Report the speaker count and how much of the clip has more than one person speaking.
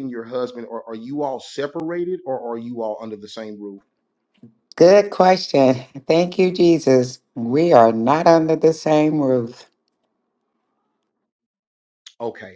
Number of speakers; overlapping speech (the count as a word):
two, no overlap